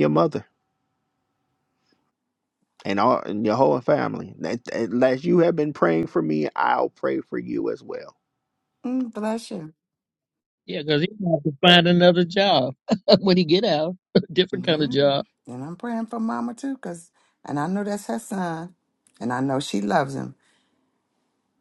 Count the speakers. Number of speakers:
three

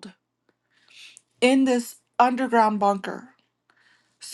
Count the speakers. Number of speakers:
one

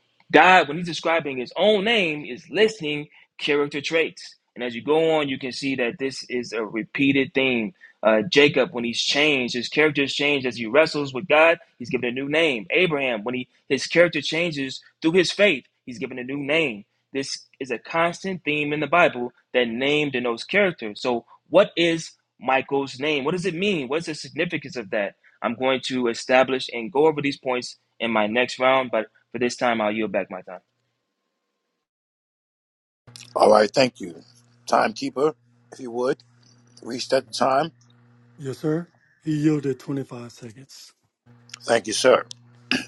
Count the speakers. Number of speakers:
three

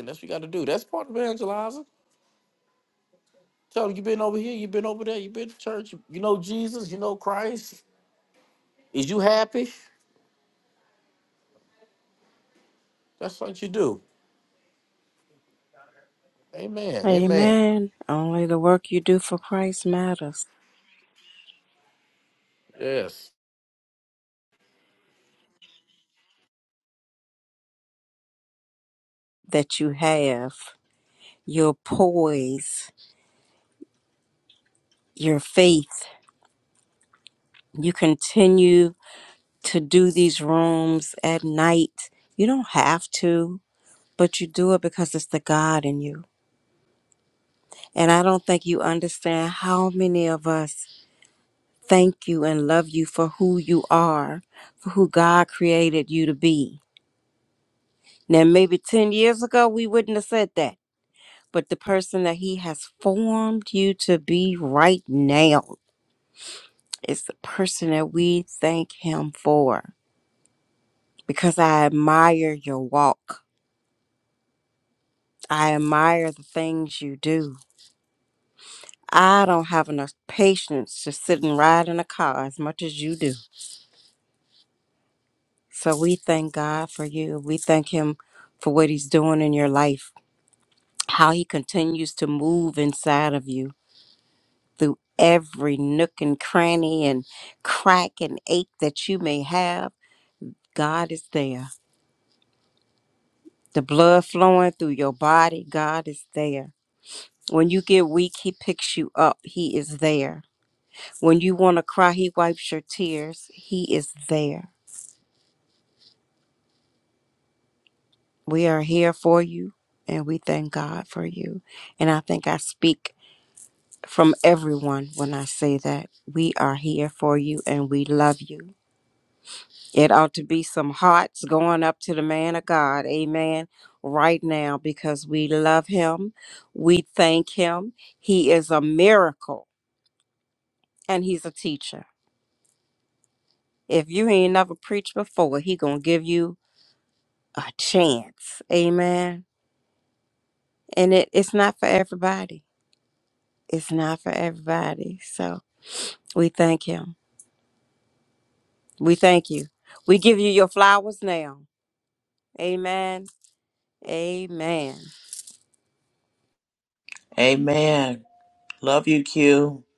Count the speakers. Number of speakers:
three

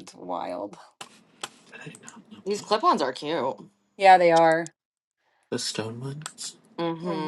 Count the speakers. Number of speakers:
three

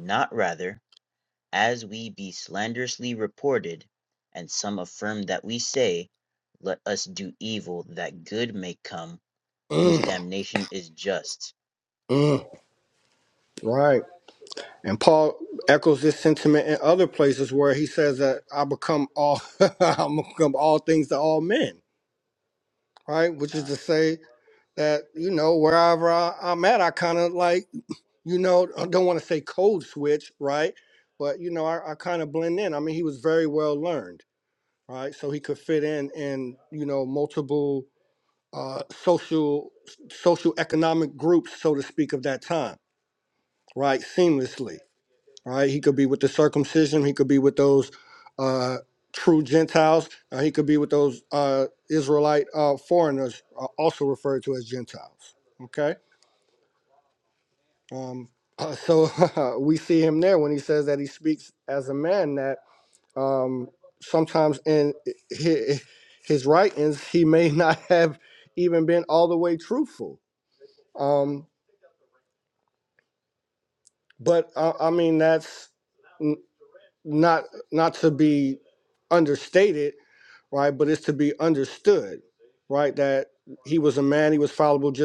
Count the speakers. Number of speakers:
two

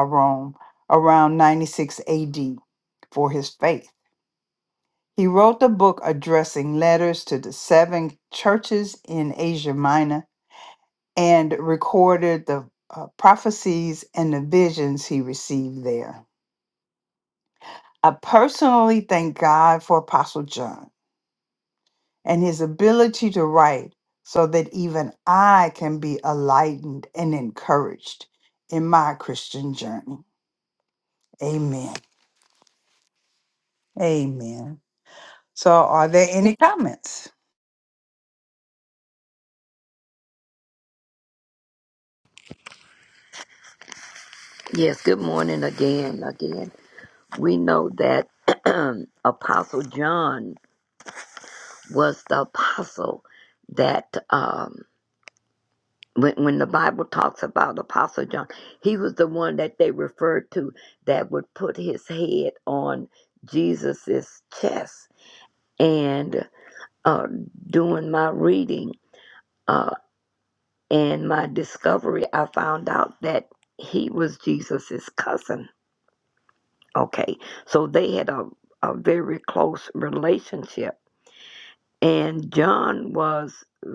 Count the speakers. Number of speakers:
two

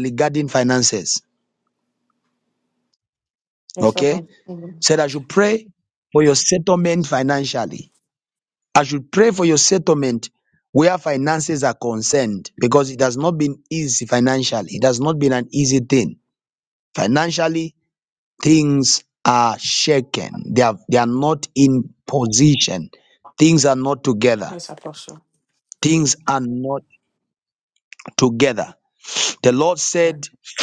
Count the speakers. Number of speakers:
two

